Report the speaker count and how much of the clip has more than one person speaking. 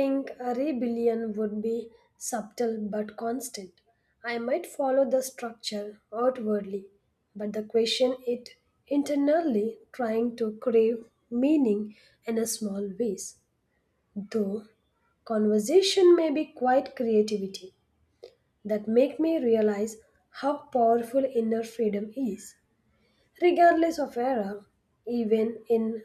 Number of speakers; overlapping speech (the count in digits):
1, no overlap